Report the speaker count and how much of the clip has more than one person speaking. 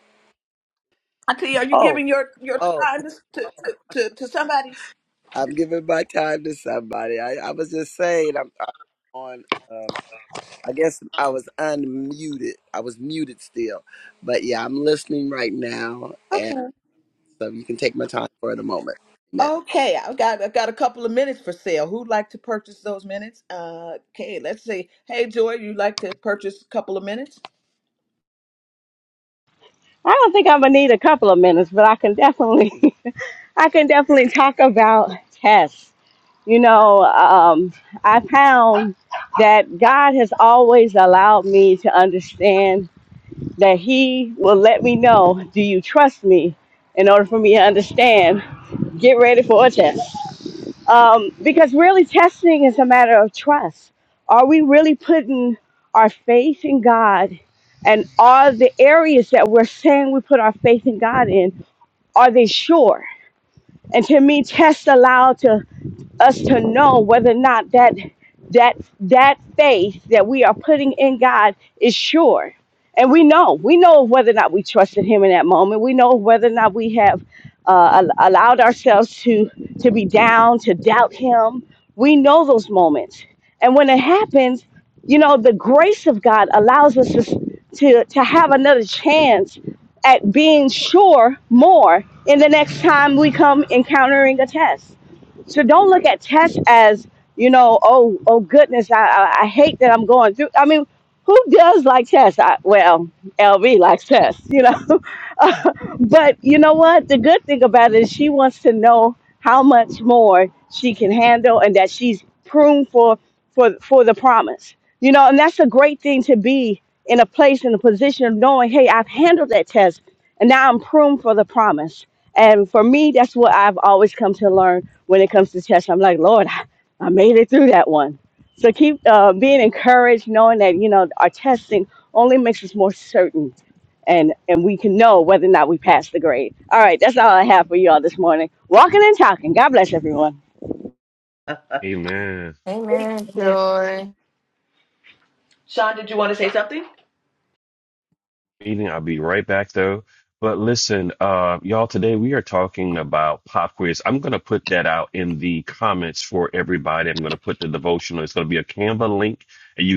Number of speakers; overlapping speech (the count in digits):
5, about 1%